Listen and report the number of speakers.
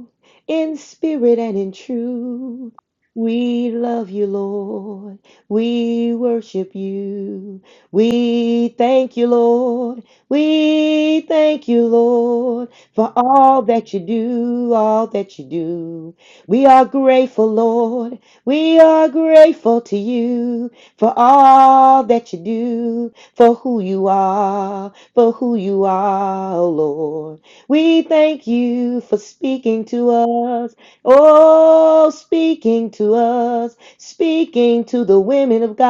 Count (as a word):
one